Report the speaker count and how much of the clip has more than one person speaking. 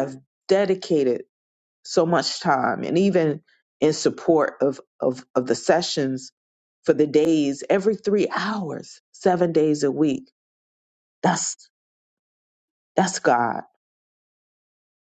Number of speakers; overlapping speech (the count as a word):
one, no overlap